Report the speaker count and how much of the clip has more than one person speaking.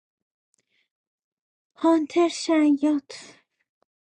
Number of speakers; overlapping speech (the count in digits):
1, no overlap